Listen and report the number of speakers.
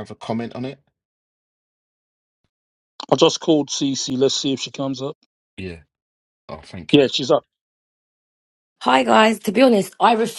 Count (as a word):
three